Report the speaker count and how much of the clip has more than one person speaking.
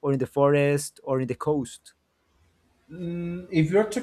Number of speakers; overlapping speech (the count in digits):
2, no overlap